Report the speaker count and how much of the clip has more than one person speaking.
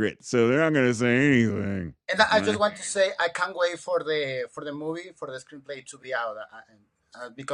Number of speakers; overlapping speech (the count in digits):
2, about 3%